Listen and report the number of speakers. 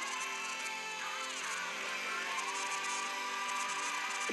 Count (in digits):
0